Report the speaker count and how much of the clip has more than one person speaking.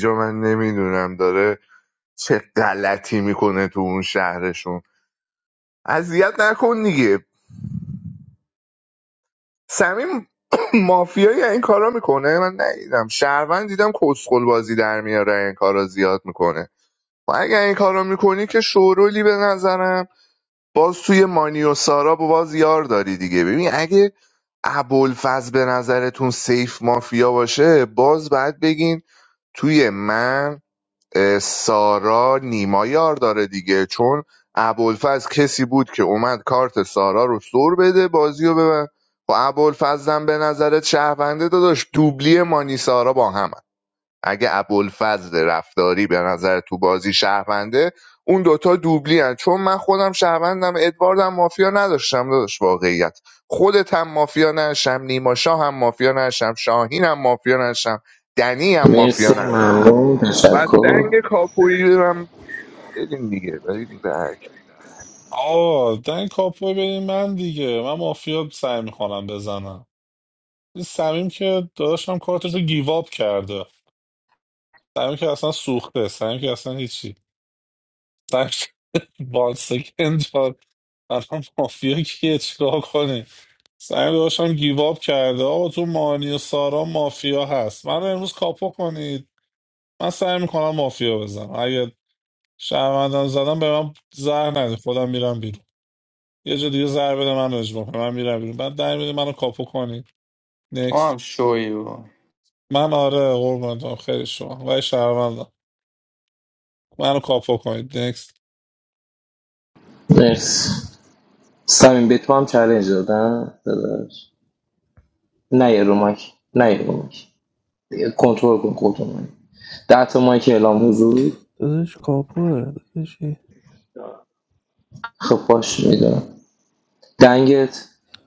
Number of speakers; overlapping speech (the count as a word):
five, about 1%